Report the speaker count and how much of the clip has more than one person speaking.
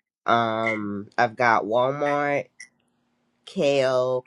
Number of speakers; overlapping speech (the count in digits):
1, no overlap